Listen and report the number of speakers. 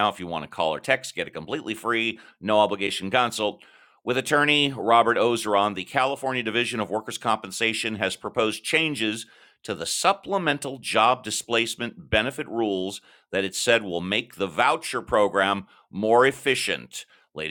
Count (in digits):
1